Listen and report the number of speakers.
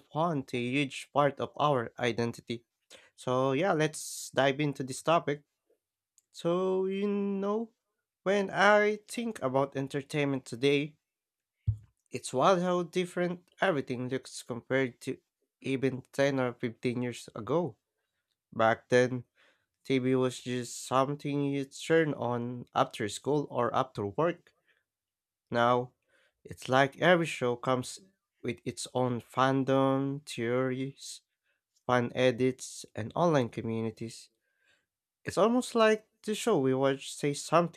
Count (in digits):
1